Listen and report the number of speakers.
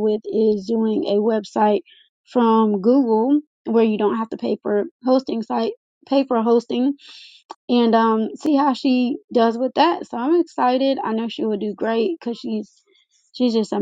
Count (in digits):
1